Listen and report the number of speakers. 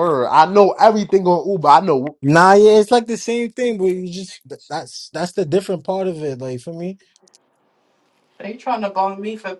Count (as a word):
three